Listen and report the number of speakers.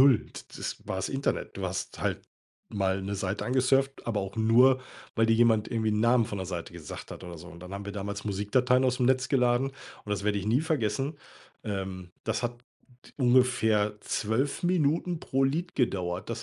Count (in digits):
1